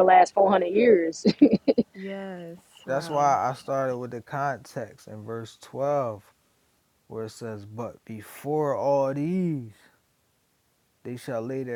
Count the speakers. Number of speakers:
three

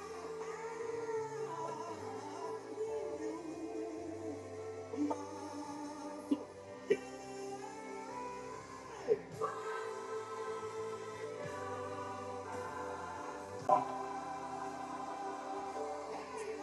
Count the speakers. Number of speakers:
zero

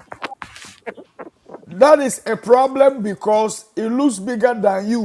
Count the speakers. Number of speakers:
one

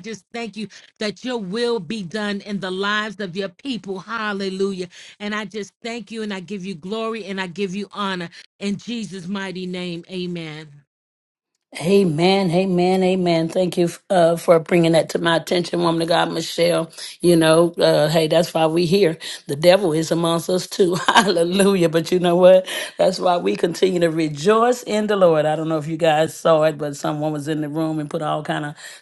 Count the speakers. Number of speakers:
two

